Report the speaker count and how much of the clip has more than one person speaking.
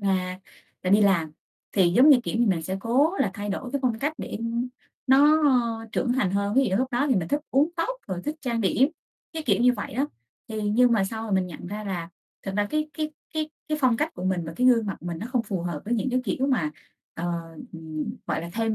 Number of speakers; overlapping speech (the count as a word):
one, no overlap